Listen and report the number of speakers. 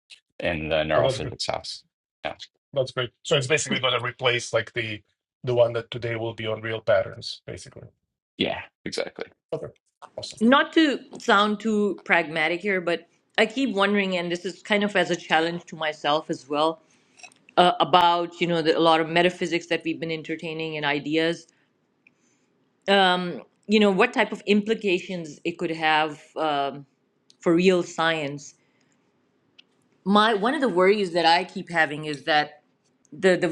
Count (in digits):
3